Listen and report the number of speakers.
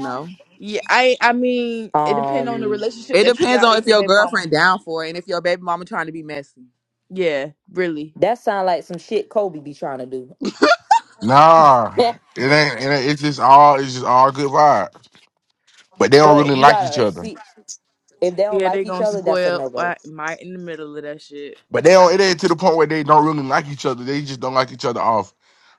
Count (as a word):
four